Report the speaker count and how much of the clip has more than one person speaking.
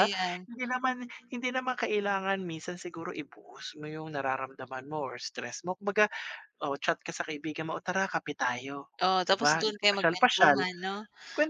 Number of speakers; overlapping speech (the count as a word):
two, about 14%